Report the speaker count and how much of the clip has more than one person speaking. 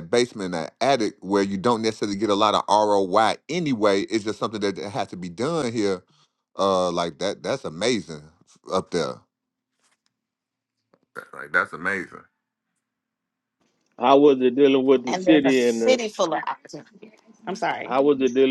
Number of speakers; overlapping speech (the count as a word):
three, about 4%